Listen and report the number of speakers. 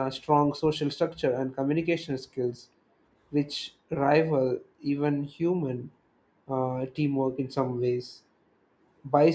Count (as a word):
one